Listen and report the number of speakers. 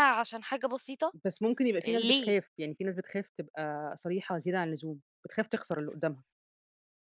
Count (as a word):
two